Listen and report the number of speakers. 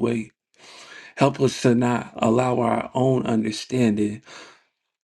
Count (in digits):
1